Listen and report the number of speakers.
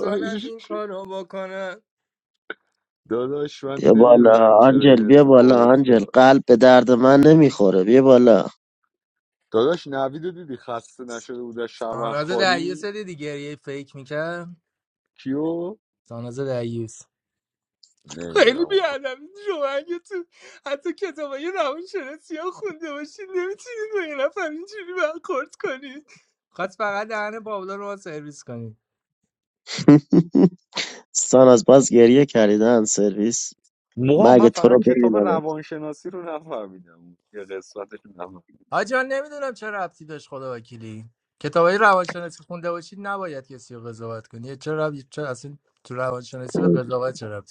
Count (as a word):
three